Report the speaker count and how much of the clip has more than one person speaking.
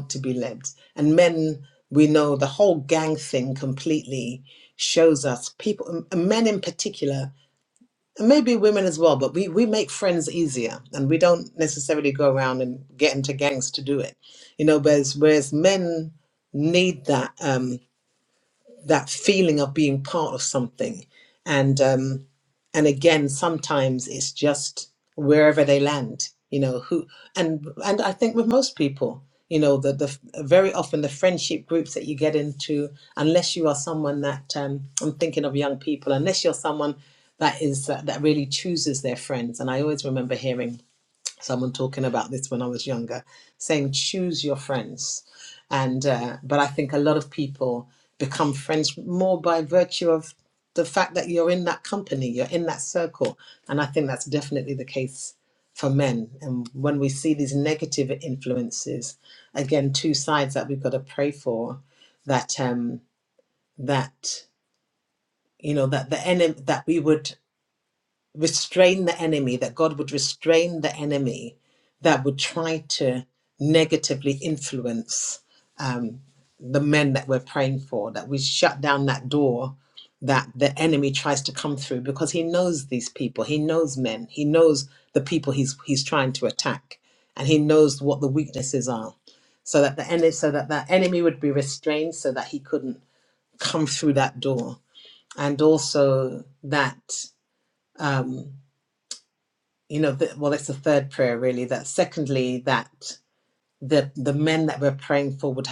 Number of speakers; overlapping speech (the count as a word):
one, no overlap